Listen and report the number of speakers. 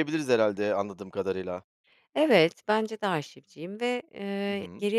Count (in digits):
2